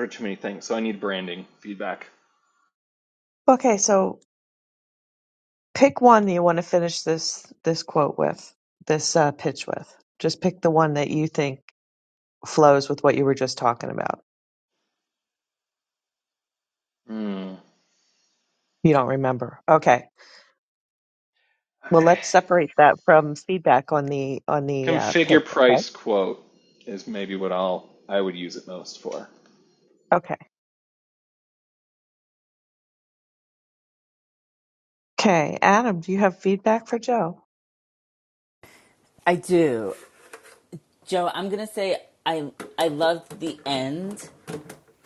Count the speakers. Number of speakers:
3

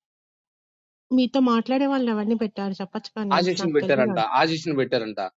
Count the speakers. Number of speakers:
2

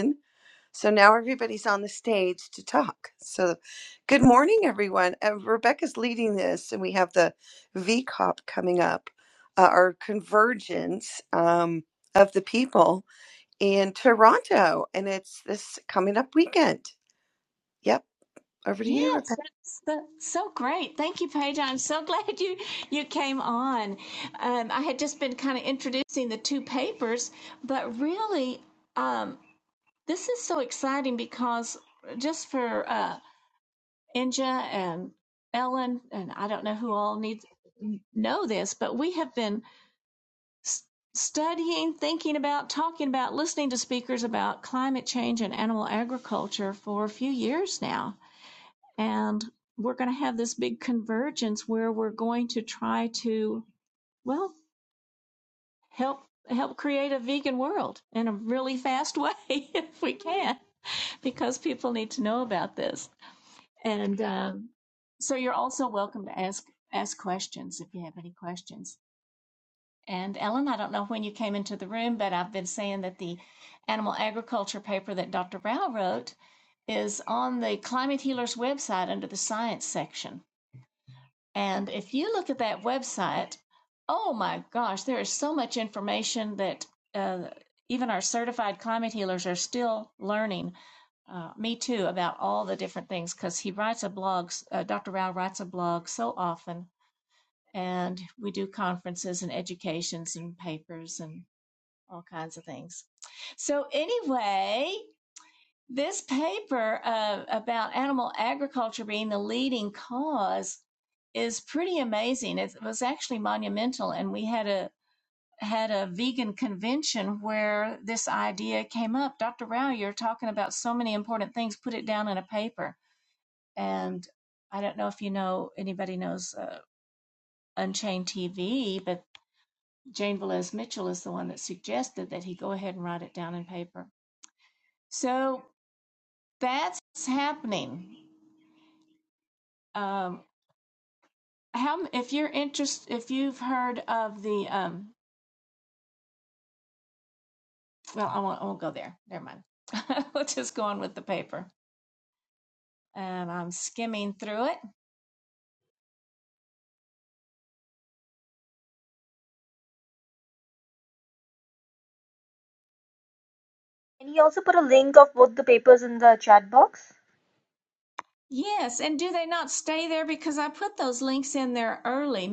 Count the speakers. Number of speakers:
3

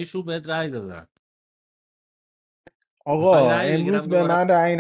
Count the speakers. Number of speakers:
2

